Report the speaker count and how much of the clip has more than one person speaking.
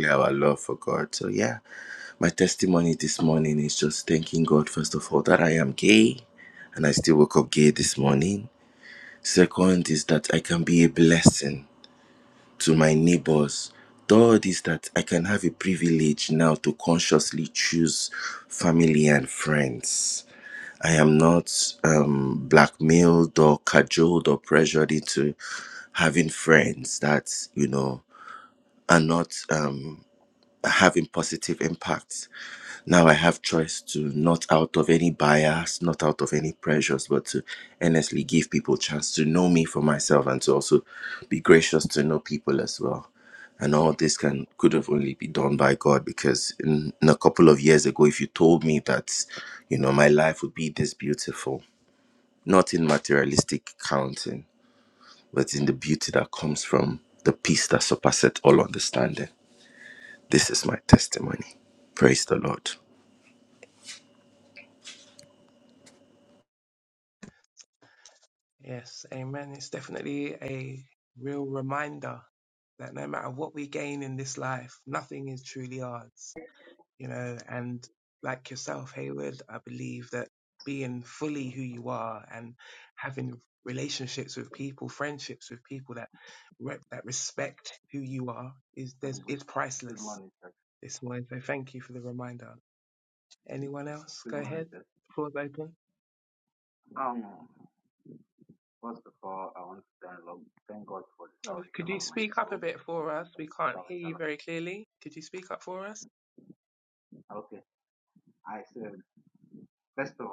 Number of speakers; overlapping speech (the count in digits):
3, about 3%